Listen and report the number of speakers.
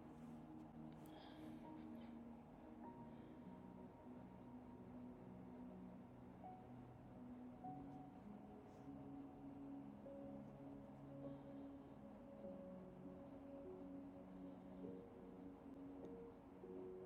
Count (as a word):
zero